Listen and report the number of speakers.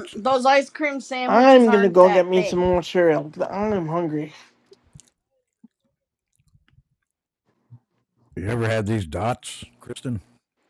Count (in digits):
3